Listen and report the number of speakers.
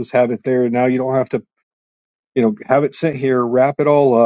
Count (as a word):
one